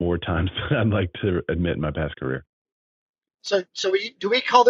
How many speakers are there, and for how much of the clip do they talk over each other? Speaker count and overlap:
two, no overlap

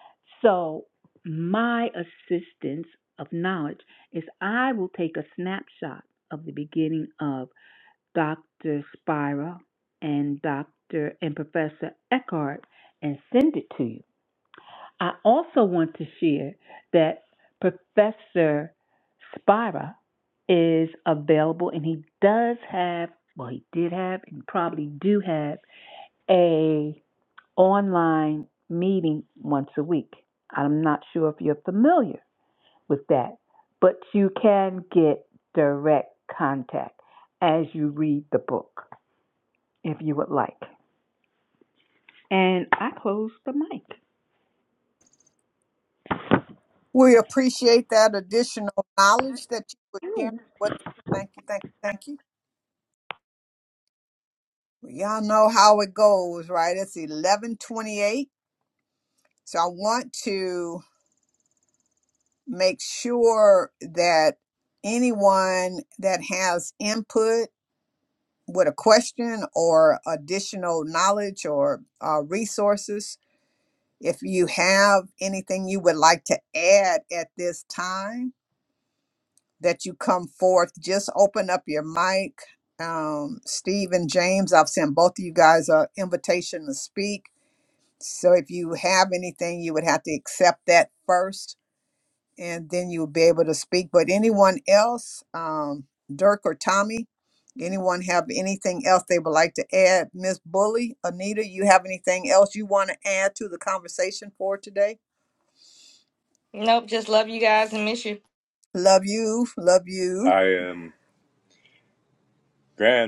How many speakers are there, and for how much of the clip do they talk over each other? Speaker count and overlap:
four, under 1%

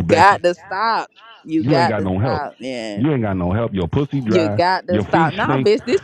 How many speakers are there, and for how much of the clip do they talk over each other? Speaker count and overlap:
two, about 44%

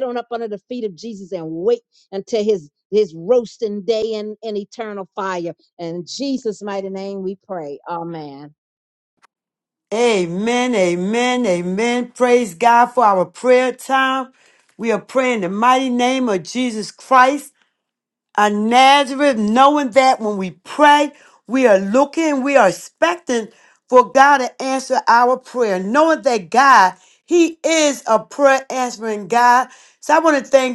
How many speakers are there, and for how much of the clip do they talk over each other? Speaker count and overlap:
two, no overlap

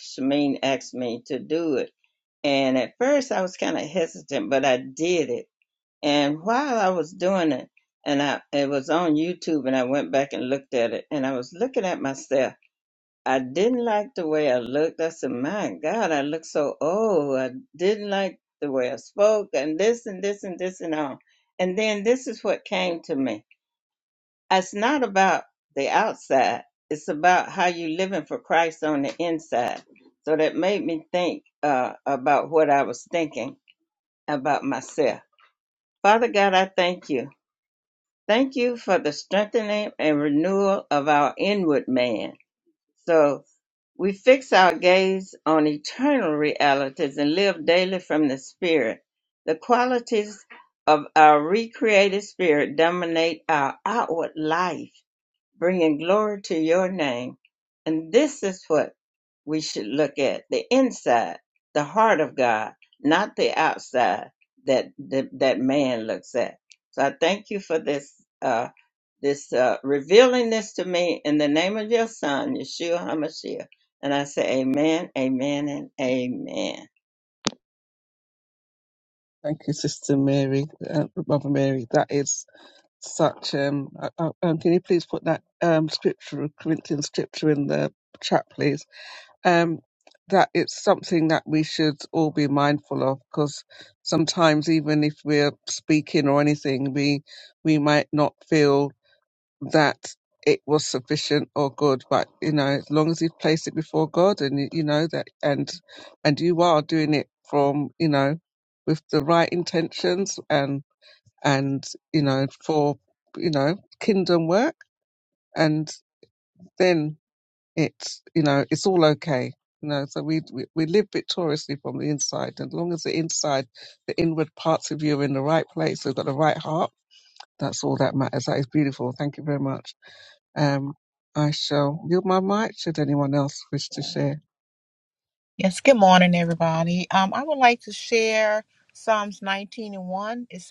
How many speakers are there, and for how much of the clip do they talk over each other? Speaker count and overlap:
three, no overlap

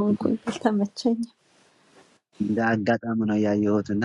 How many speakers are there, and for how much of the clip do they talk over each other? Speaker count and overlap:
two, no overlap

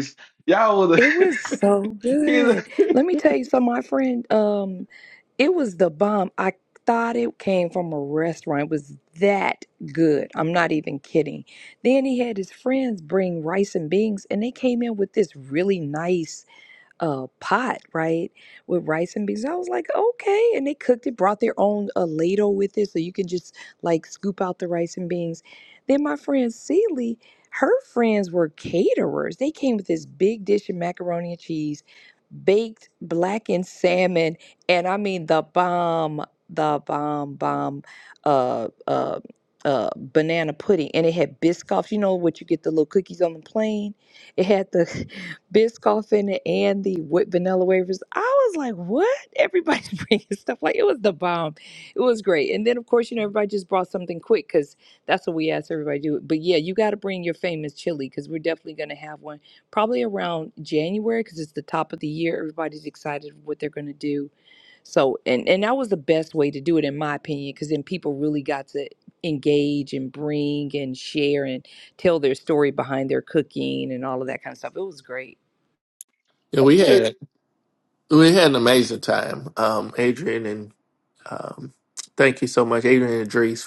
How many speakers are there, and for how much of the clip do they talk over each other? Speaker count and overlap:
three, about 1%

